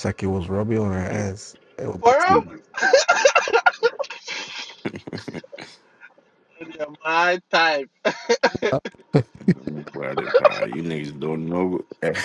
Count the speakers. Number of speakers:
3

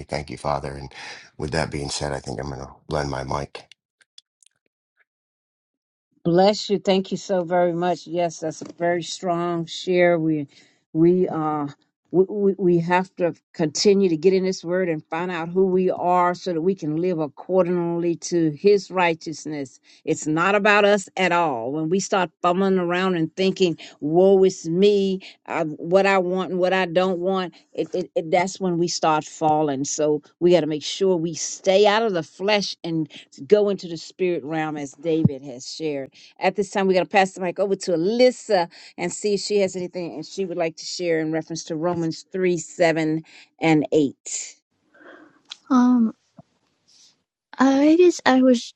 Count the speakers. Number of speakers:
3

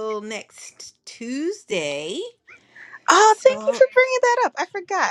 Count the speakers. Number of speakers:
2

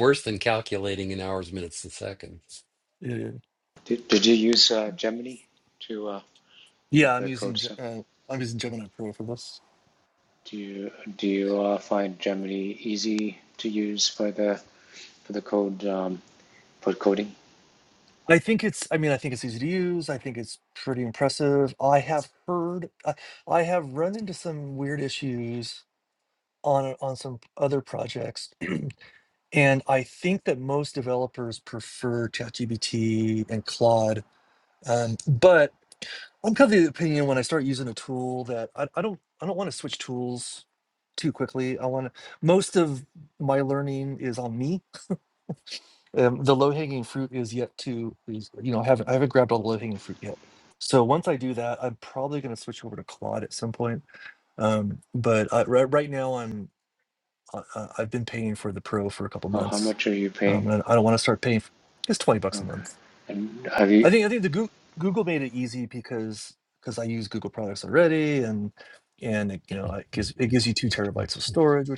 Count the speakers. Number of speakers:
3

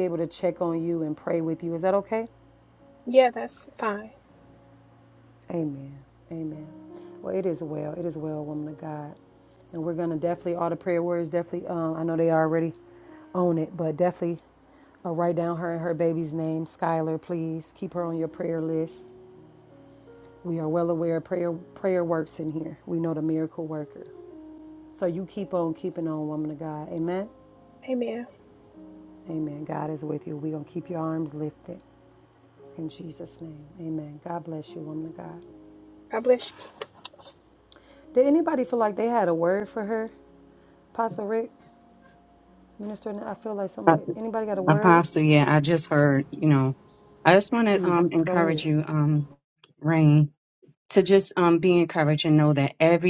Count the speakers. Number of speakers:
3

